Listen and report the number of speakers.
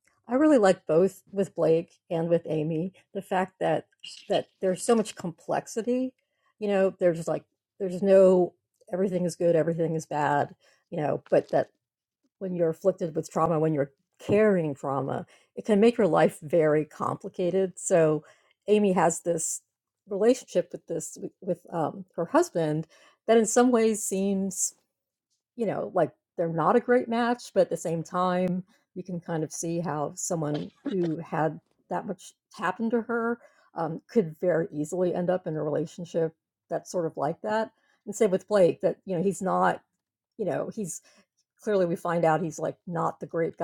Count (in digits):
1